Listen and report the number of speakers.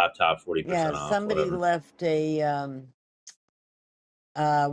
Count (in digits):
2